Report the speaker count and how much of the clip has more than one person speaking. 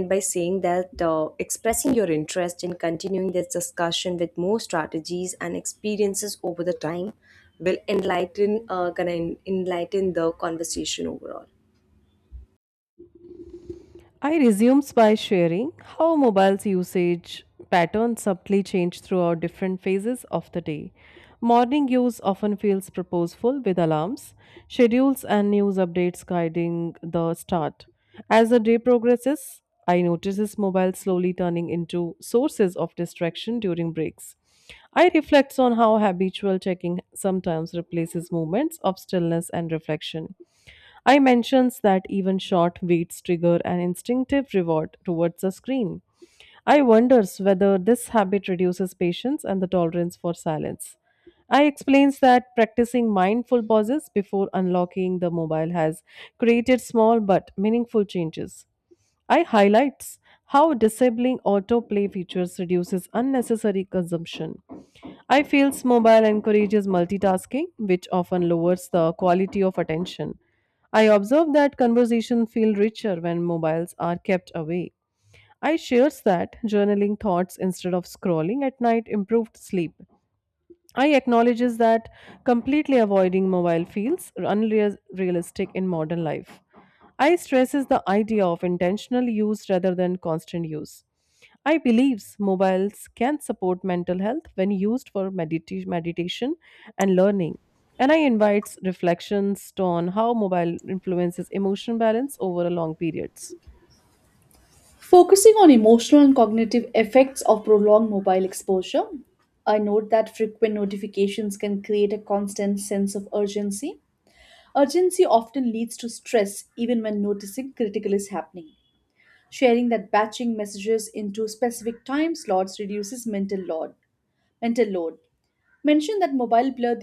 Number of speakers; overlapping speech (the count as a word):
three, no overlap